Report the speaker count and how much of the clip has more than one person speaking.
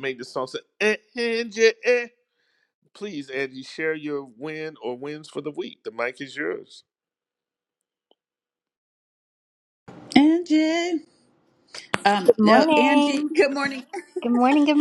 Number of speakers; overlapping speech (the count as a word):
three, about 7%